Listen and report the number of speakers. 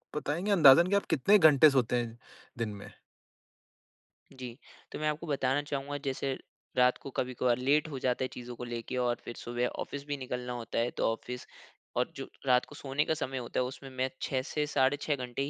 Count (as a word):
two